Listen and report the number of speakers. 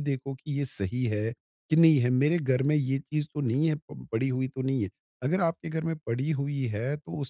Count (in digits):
1